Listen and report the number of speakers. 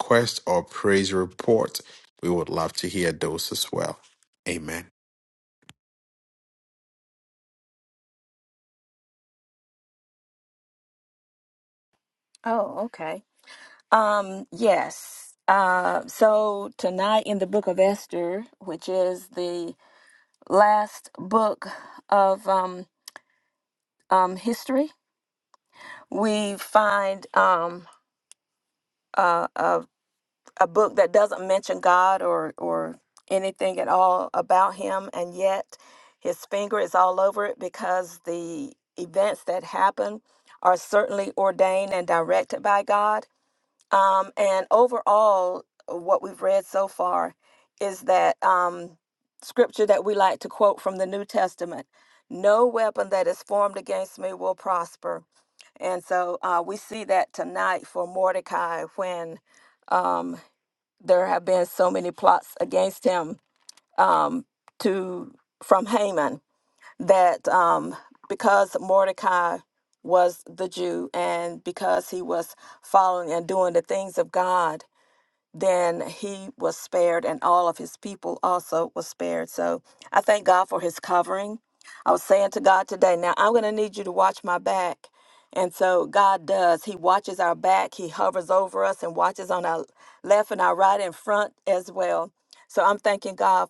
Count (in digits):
2